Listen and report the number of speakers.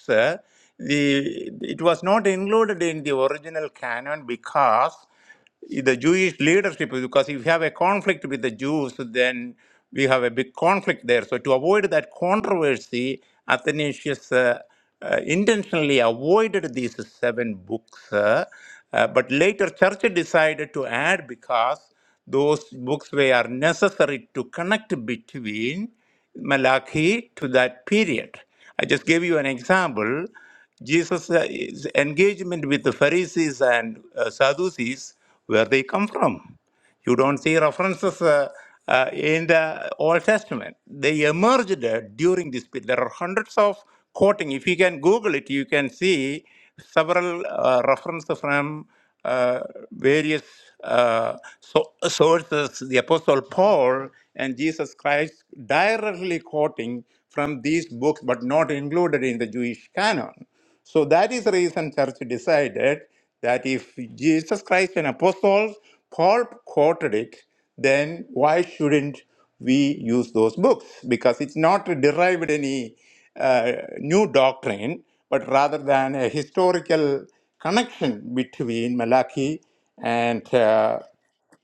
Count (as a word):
one